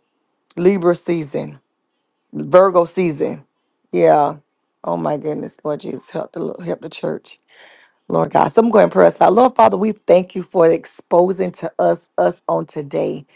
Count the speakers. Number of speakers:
1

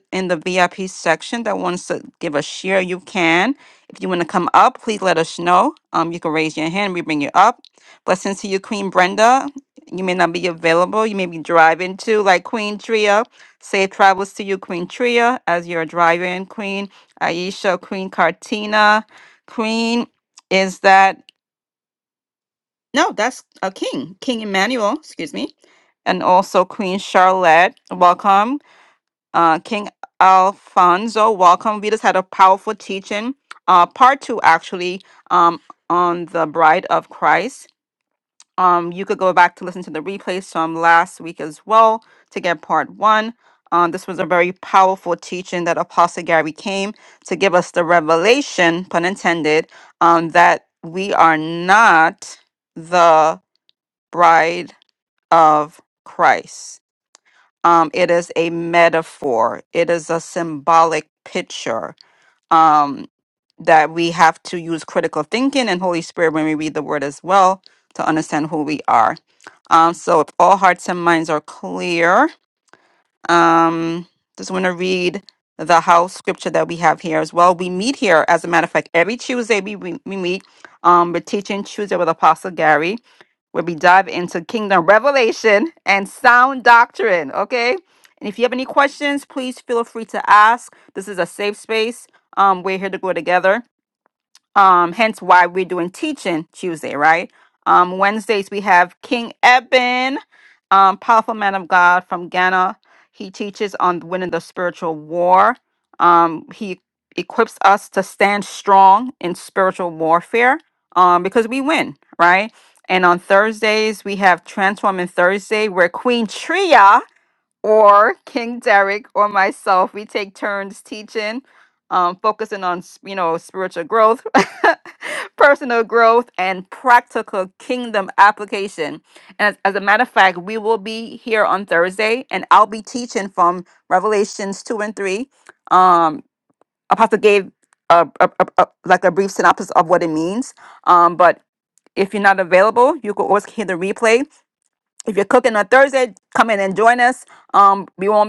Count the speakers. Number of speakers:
1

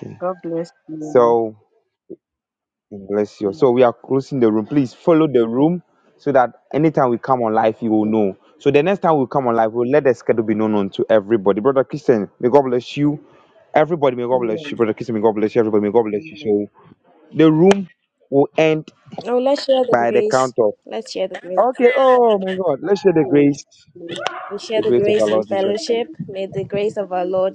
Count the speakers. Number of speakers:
3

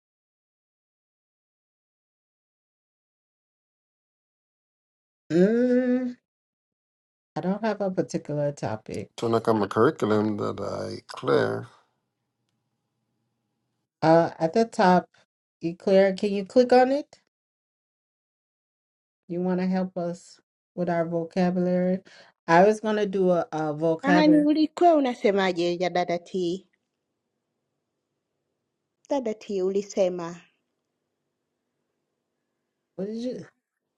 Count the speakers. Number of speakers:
3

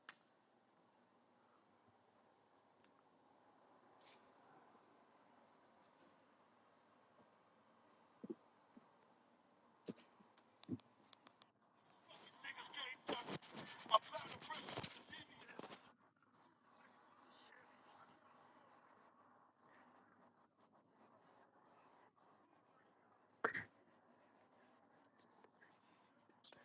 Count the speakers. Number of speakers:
0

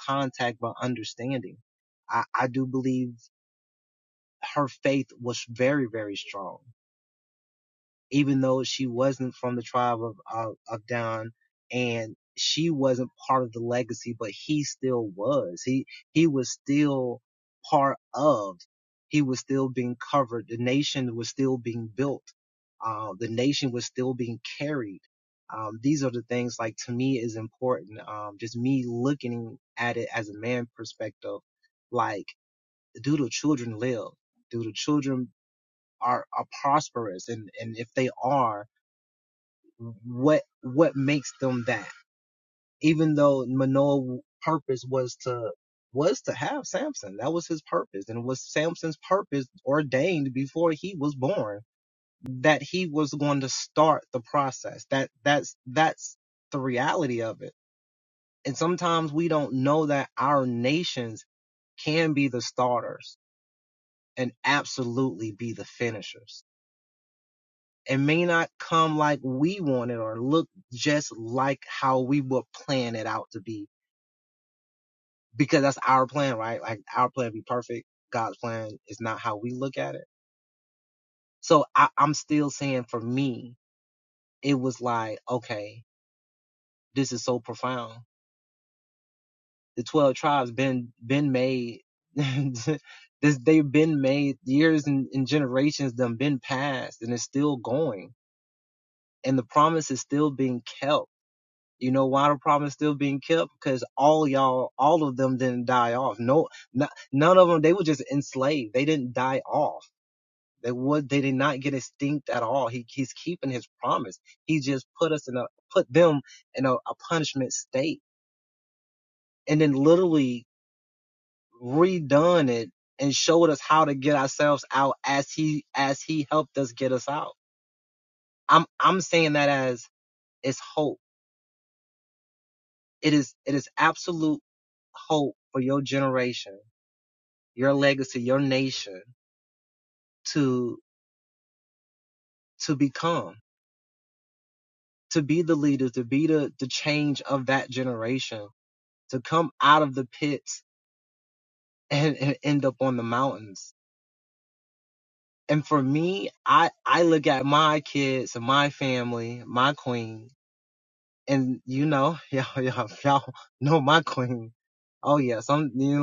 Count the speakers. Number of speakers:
1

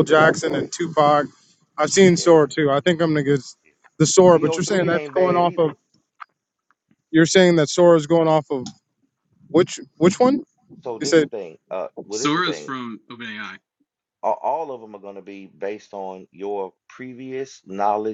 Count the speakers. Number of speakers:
3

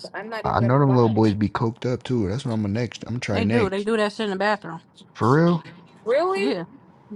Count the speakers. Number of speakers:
3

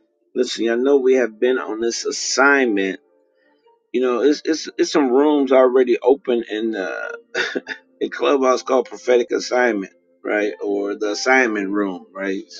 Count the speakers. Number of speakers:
1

